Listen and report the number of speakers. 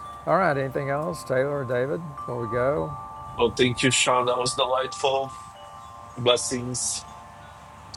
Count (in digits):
2